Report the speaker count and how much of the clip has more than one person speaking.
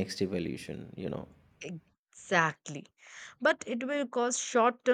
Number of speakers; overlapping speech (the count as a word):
two, no overlap